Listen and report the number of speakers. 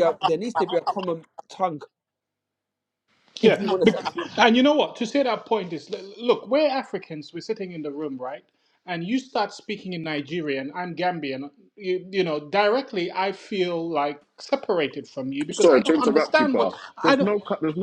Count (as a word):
three